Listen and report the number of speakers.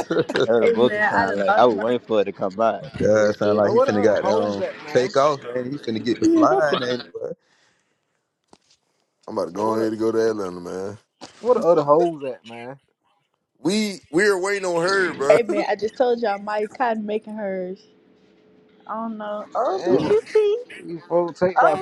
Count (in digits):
5